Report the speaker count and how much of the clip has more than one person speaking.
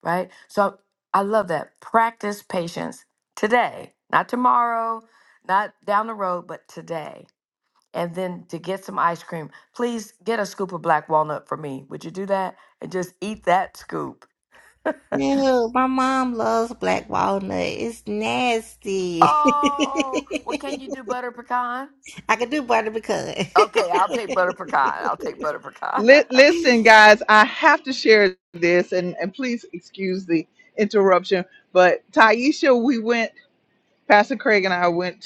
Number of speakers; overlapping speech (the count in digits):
3, about 1%